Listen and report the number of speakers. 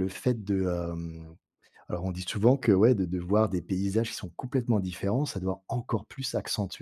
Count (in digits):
1